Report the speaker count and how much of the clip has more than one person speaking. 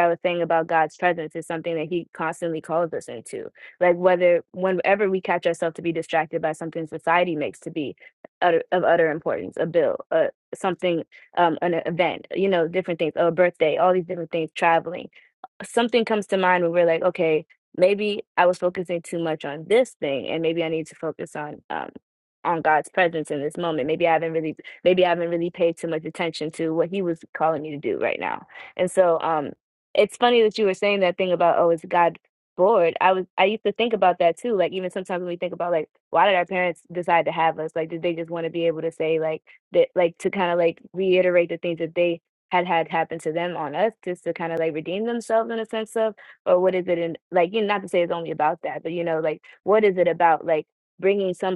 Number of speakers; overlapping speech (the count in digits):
1, no overlap